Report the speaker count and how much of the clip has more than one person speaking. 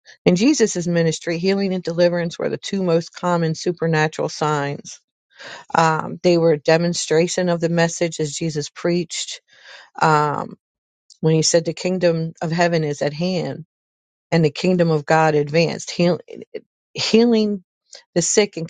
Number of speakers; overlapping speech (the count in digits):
1, no overlap